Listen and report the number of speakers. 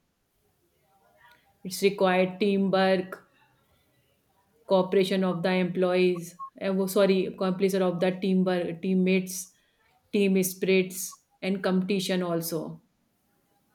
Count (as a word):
one